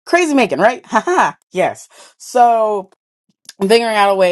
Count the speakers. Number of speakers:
one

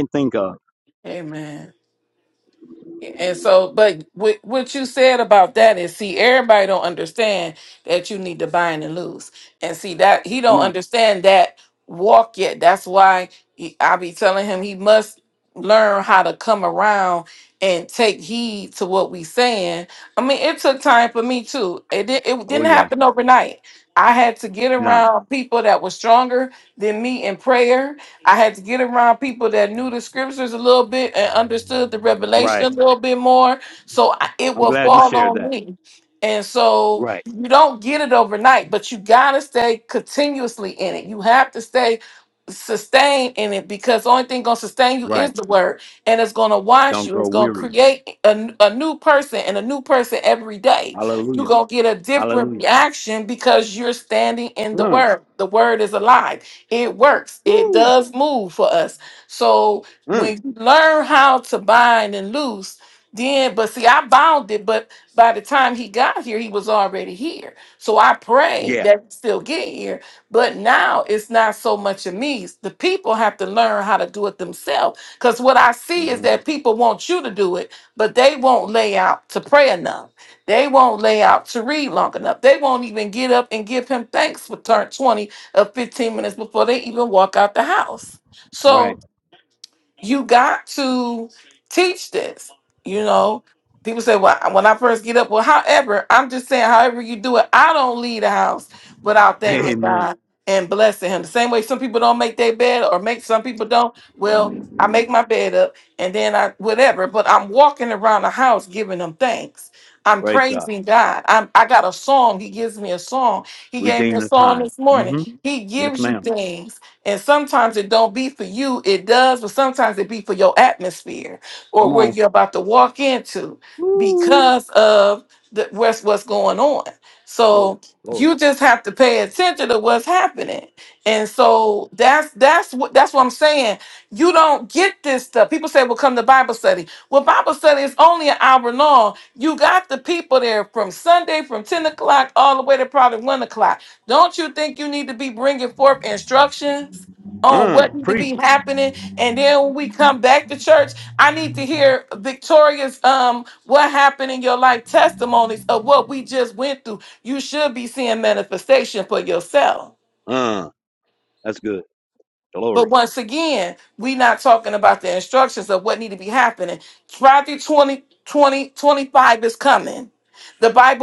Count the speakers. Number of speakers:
two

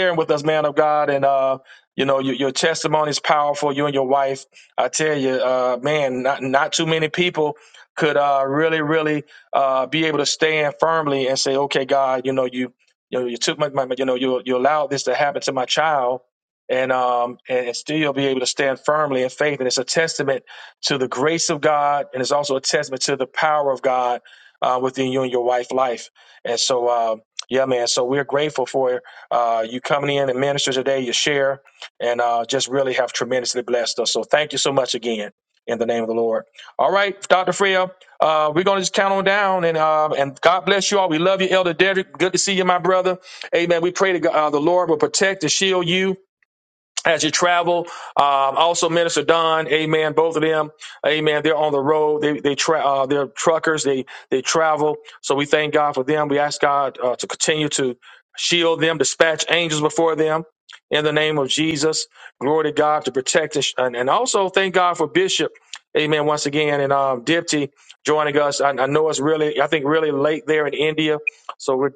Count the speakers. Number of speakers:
one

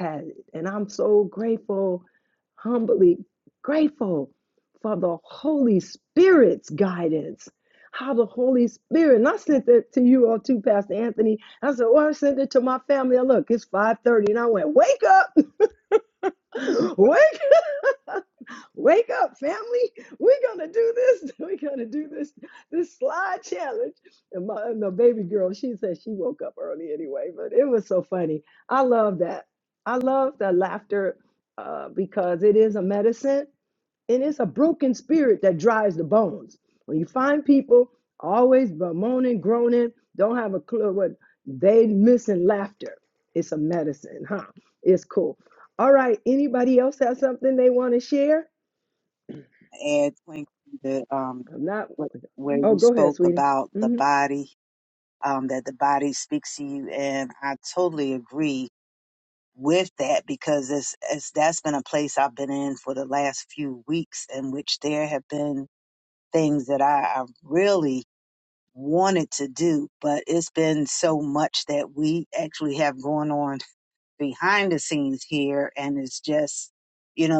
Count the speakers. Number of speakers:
two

